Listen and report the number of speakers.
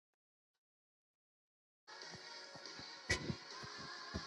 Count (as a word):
zero